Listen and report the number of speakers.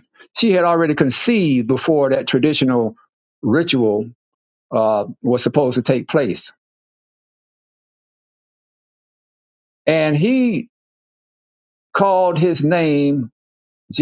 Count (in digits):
1